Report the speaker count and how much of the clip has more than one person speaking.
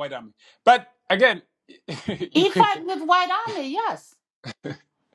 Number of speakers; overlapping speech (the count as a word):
two, about 6%